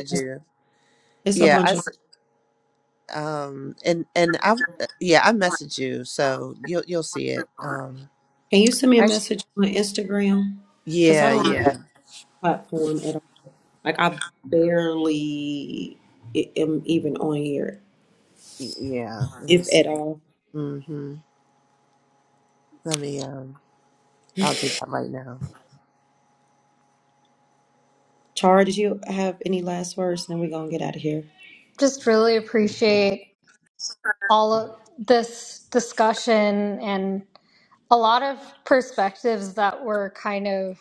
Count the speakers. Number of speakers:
3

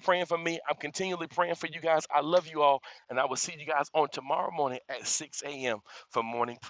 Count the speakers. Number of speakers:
1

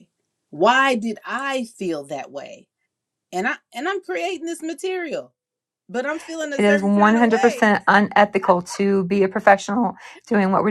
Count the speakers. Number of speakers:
2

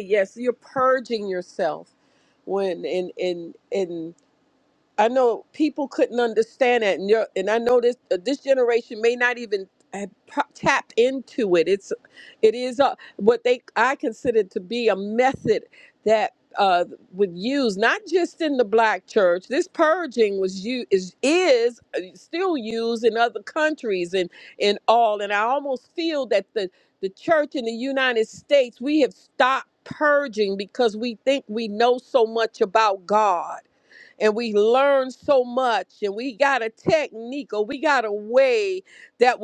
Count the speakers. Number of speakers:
1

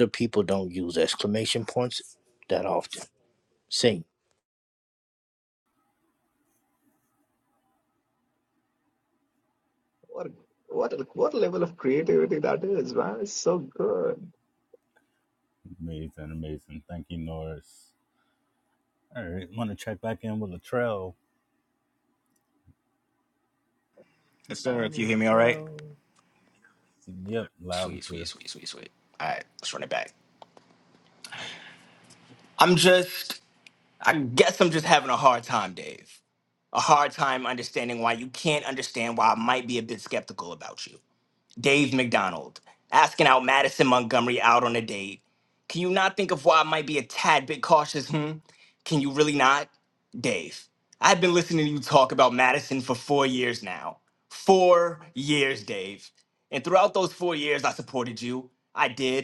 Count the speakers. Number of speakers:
4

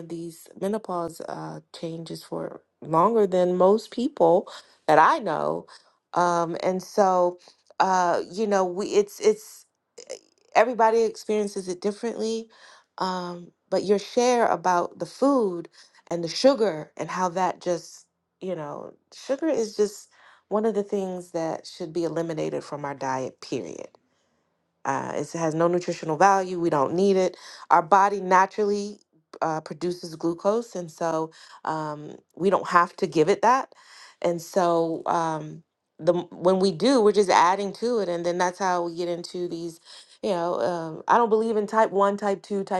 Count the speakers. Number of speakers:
1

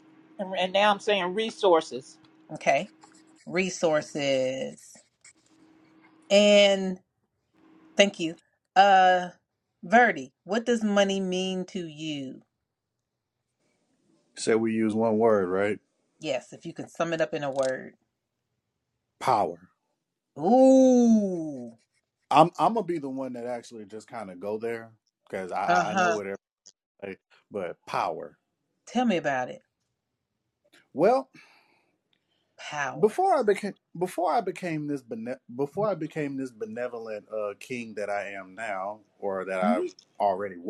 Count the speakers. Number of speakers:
3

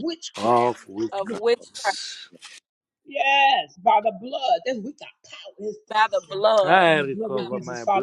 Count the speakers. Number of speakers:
3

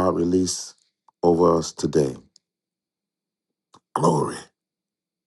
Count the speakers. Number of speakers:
1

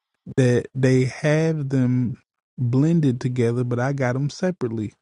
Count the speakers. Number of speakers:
1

